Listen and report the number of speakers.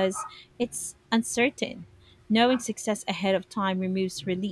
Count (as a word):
one